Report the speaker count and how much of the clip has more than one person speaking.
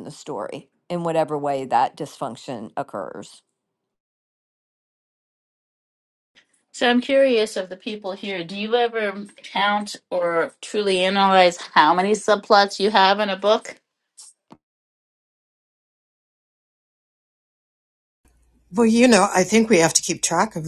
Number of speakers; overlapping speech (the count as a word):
three, no overlap